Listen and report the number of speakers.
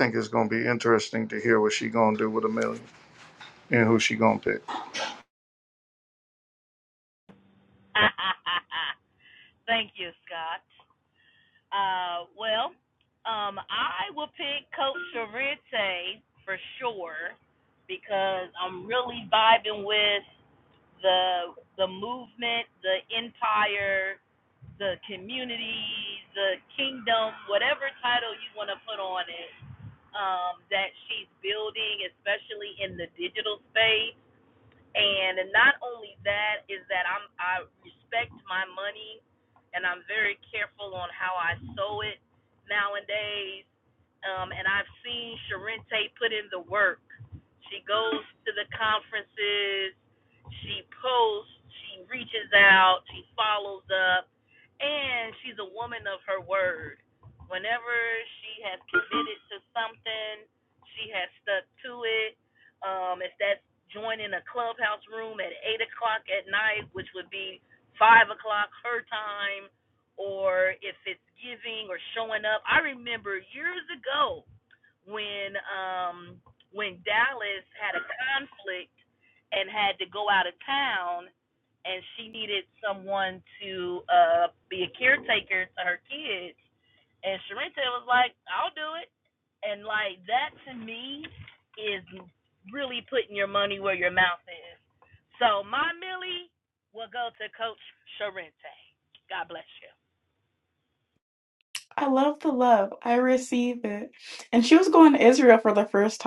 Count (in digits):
3